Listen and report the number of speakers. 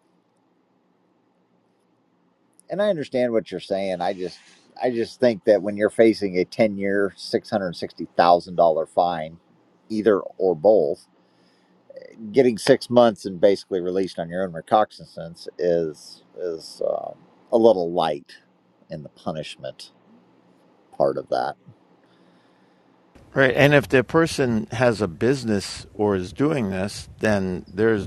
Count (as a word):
two